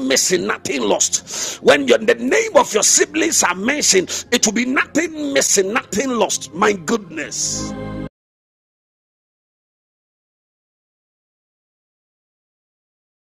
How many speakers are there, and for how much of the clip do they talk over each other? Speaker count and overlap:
one, no overlap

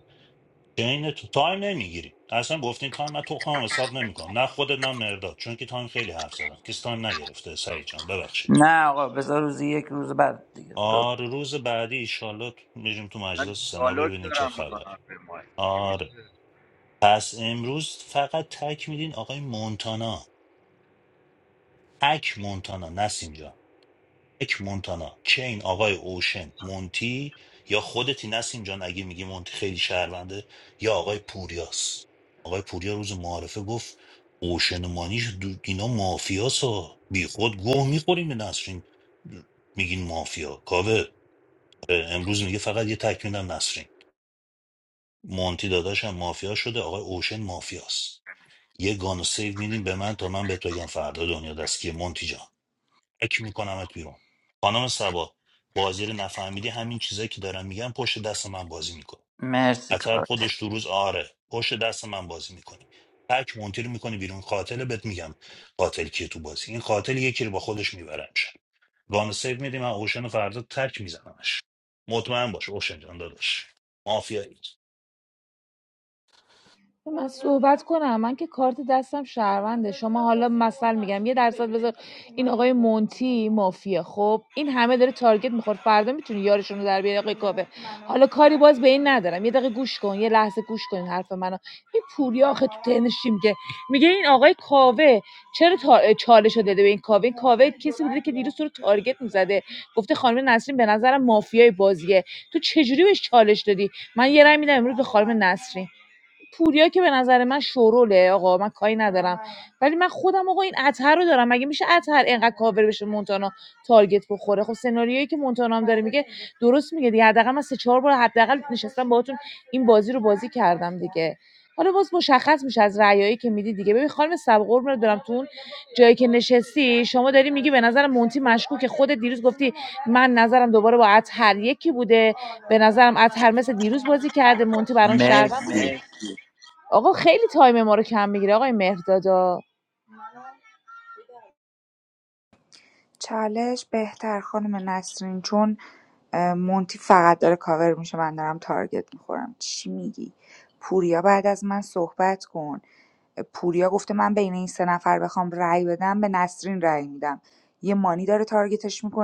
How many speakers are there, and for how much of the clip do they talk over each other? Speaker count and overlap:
five, about 2%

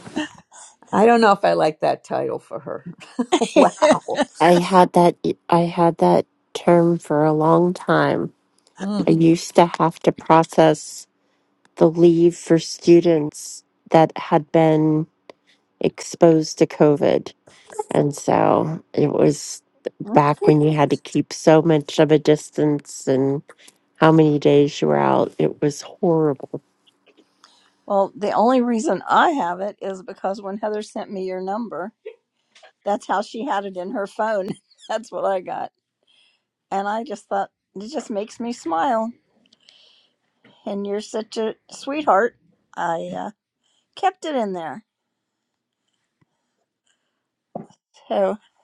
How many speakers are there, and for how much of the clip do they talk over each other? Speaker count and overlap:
three, no overlap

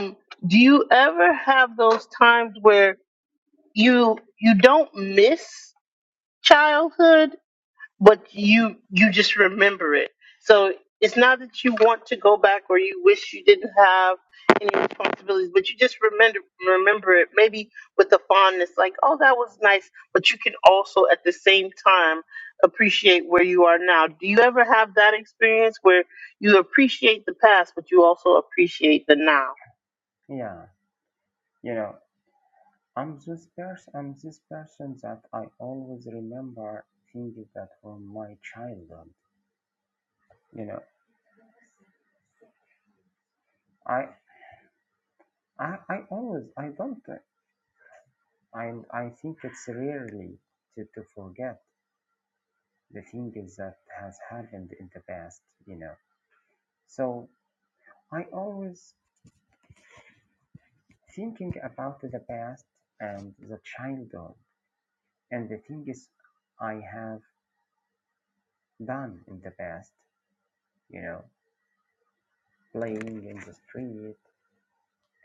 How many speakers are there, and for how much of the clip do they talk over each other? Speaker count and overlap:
two, no overlap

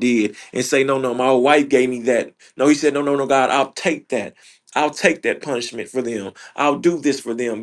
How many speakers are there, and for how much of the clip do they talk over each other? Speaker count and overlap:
one, no overlap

